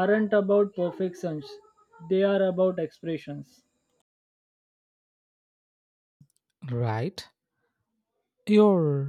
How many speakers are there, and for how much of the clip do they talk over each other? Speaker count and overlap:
two, no overlap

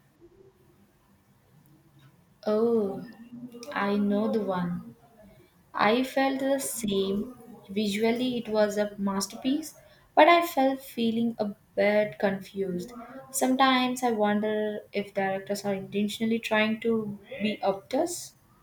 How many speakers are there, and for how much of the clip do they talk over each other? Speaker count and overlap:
one, no overlap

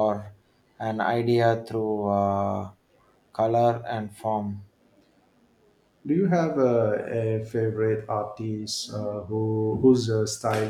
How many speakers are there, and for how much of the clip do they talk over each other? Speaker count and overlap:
two, no overlap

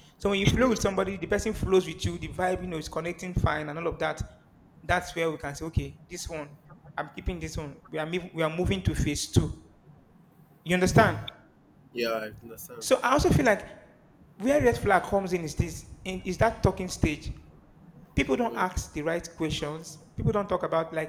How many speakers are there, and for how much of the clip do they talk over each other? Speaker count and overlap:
two, about 3%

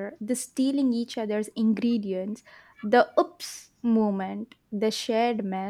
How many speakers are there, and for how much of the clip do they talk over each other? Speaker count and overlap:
one, no overlap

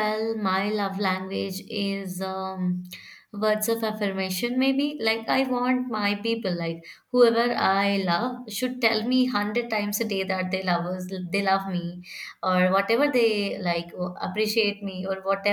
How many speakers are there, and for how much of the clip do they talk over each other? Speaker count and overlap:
one, no overlap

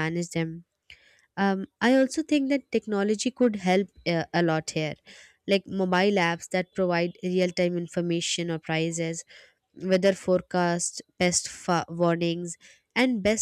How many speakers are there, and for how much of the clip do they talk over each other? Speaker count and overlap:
one, no overlap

